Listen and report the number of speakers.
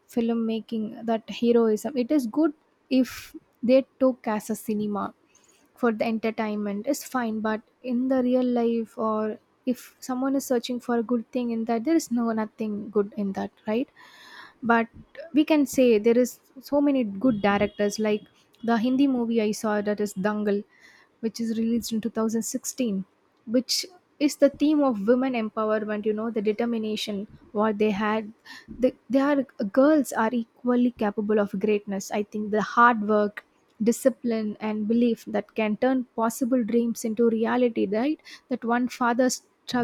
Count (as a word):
one